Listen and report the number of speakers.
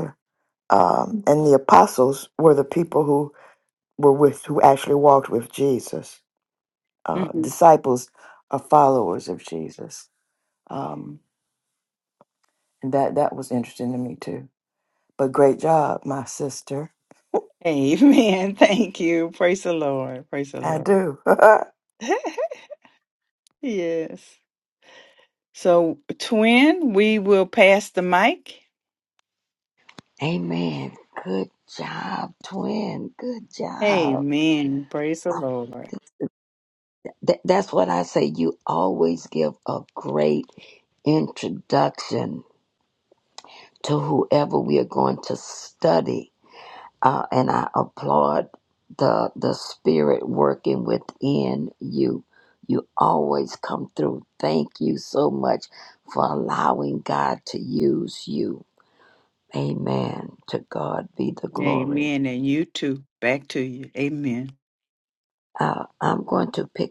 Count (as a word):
three